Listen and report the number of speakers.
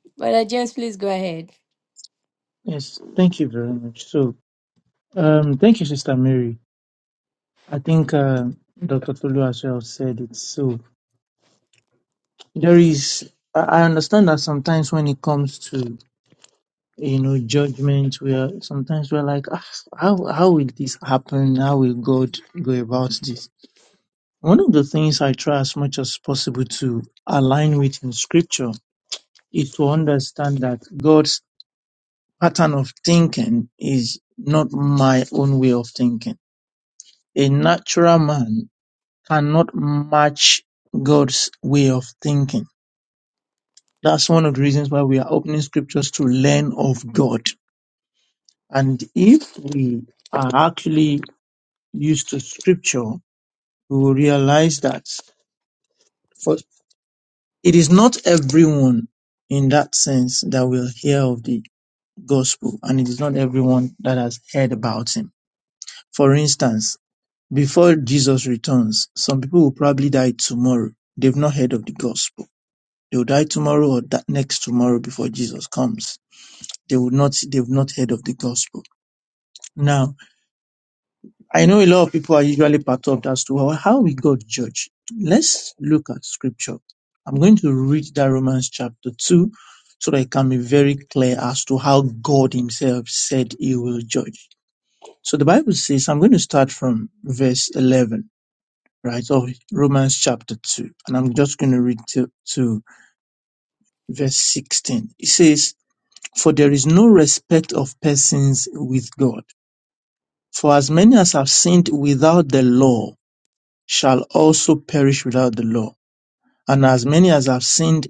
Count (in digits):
2